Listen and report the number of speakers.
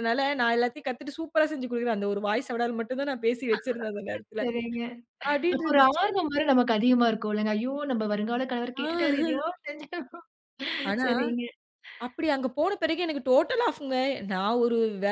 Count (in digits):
2